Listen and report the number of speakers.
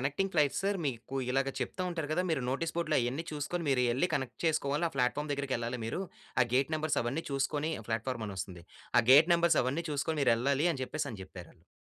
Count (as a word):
one